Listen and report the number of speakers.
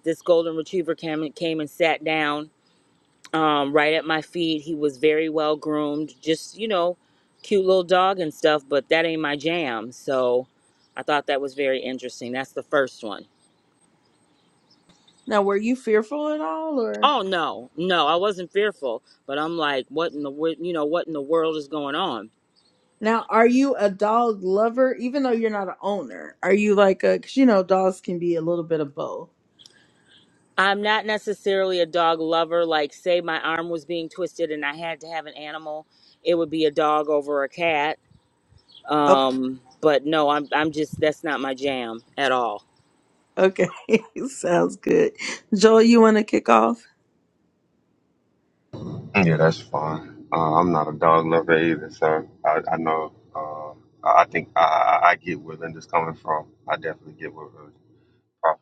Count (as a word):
three